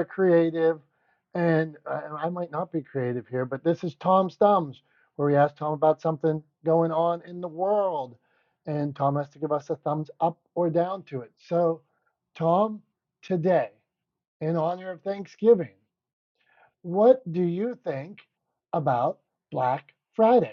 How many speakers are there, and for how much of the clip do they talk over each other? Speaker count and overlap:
1, no overlap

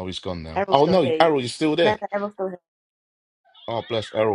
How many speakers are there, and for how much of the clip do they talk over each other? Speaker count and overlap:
2, about 19%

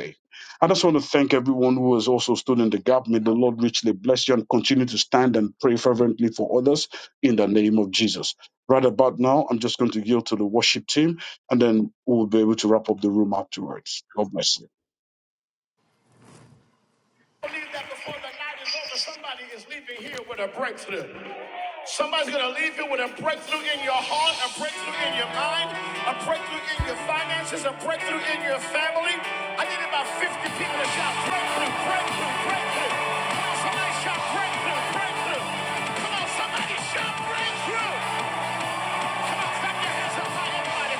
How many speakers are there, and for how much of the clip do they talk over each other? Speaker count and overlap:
2, no overlap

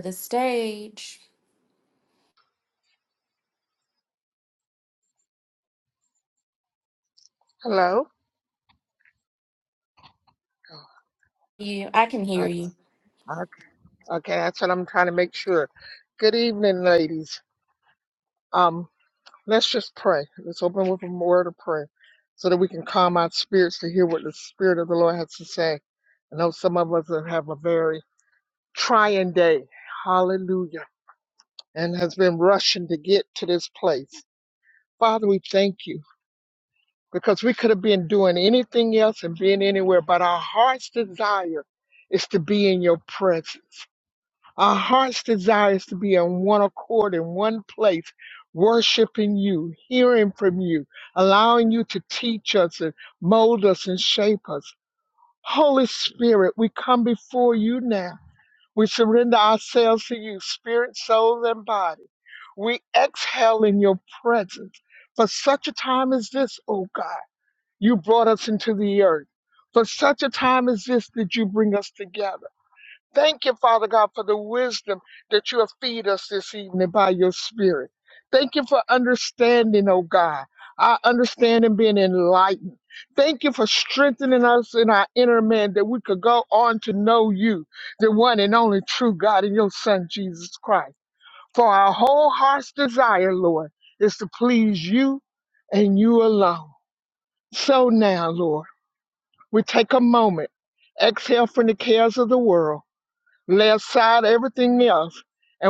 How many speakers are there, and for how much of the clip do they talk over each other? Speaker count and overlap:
2, under 1%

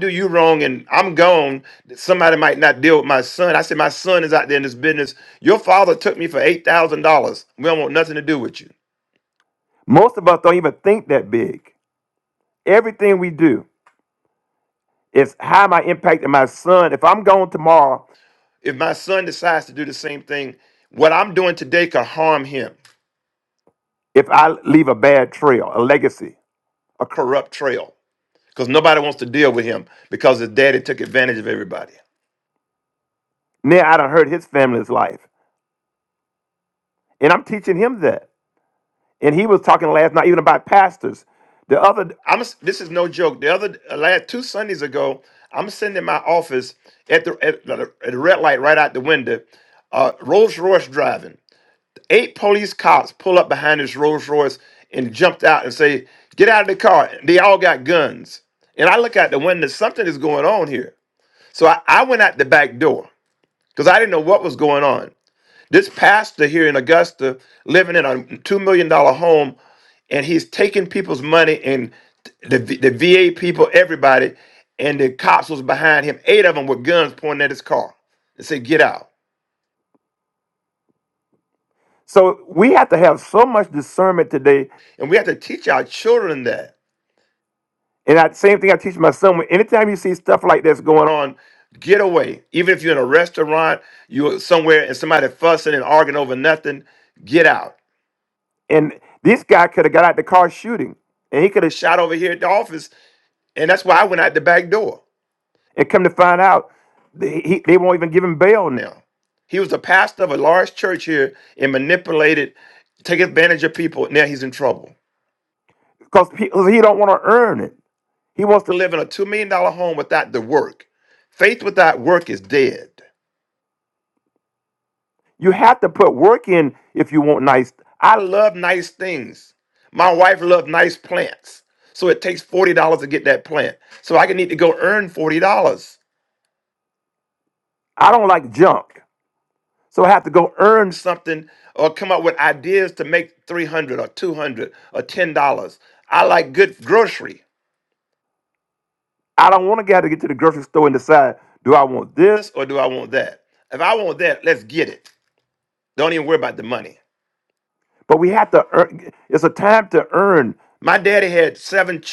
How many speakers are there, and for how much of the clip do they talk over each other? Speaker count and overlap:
1, no overlap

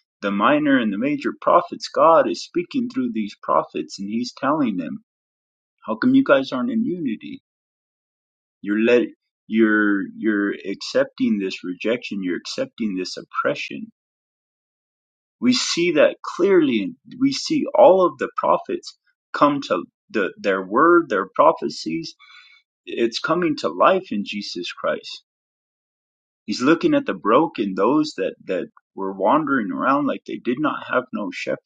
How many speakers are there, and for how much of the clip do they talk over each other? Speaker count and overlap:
1, no overlap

